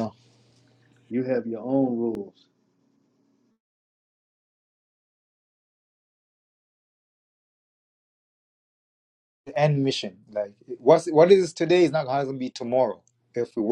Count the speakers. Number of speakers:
2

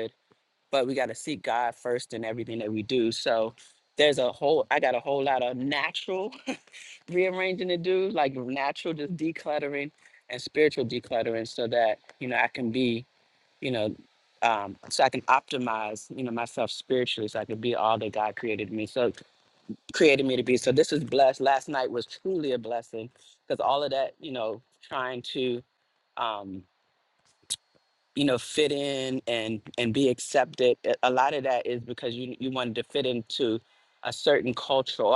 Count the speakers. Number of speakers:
1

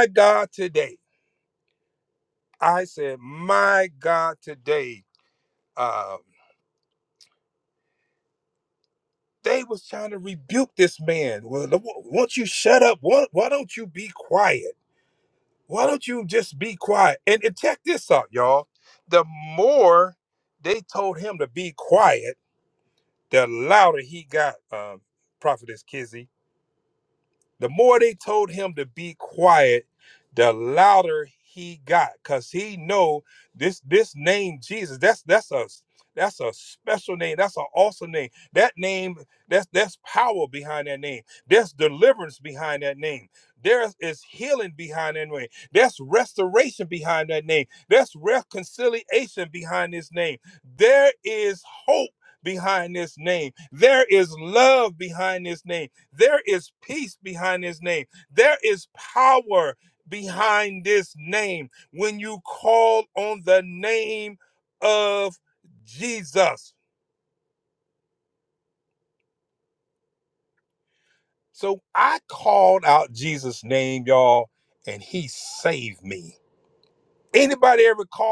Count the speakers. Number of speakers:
1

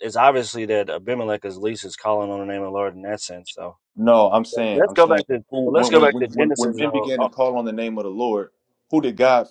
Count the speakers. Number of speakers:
2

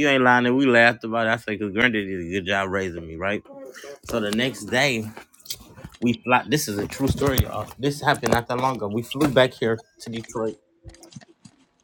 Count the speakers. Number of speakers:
1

